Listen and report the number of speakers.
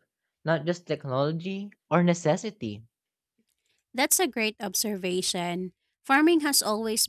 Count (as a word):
two